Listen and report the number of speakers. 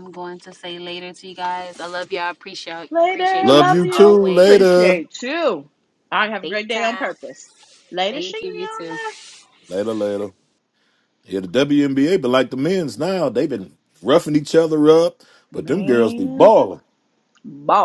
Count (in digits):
3